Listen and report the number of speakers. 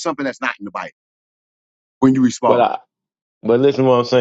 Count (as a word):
two